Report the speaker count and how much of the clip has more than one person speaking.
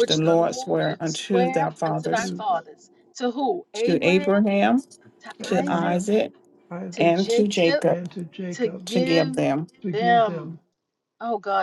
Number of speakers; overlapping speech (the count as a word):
three, about 50%